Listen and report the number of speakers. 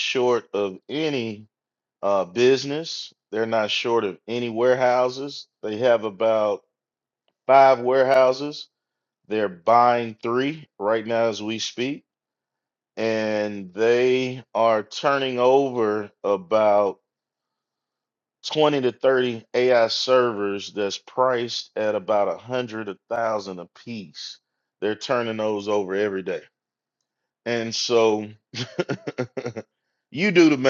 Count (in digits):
1